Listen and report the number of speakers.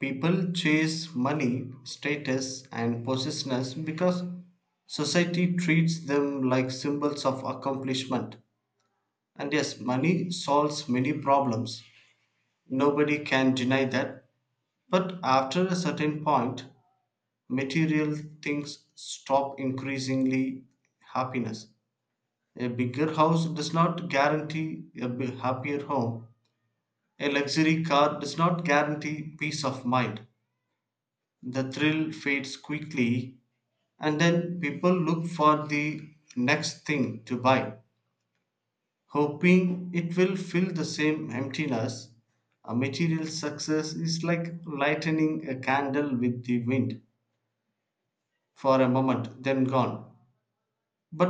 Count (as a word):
one